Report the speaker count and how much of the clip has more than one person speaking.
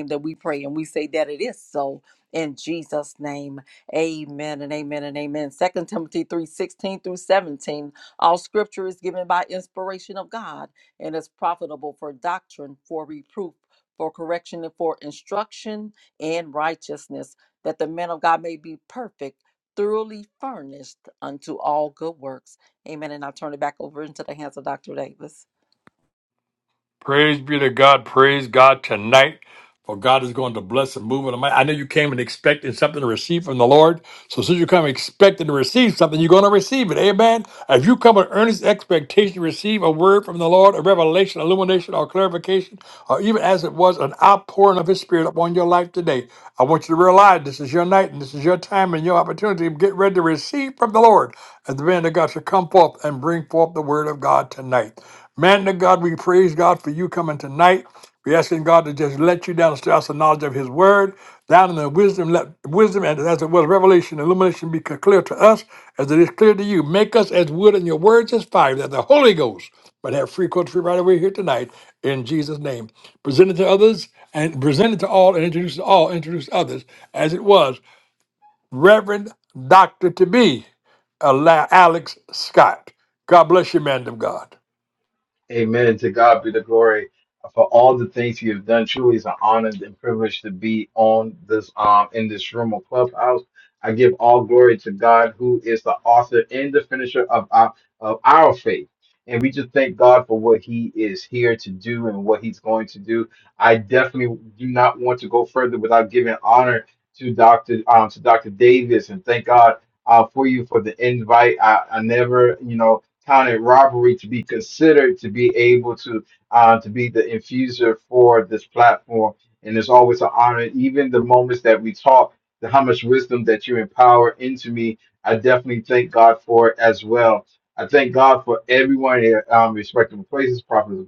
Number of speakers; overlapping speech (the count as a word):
three, no overlap